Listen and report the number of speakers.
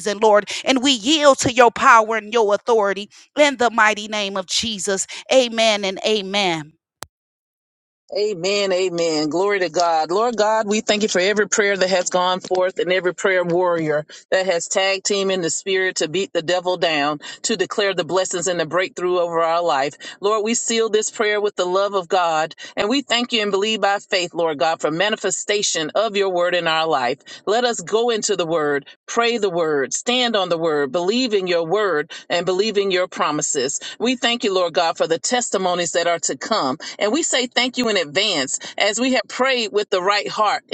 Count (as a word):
two